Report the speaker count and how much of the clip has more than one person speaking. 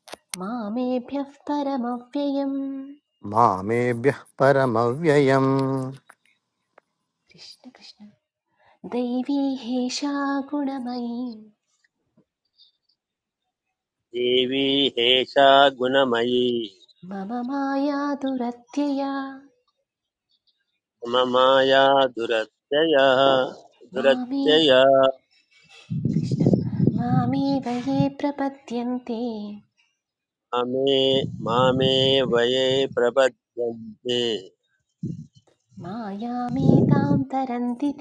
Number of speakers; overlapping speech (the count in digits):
3, about 2%